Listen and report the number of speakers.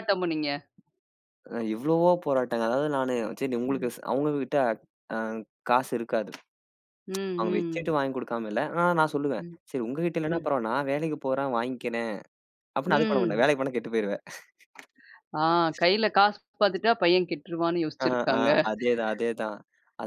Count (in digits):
2